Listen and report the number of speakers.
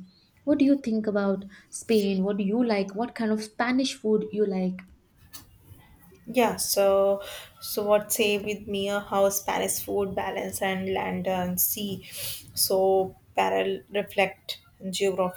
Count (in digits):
2